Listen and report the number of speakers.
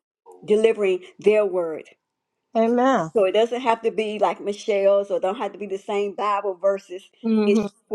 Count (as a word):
two